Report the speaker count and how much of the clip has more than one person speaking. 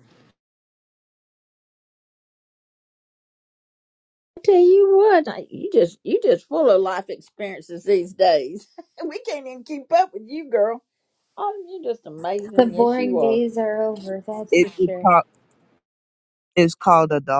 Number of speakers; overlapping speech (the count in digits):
3, about 8%